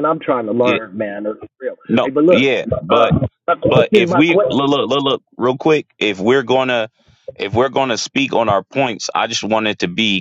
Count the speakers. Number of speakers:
2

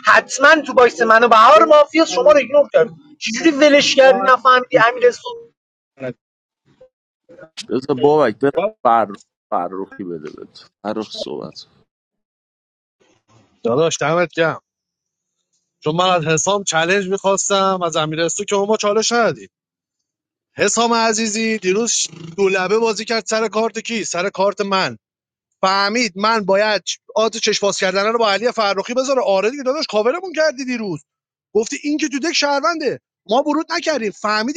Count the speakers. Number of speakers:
3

